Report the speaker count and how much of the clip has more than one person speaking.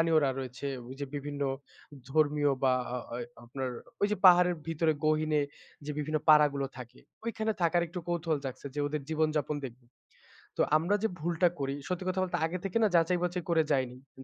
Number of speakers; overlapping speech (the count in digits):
1, no overlap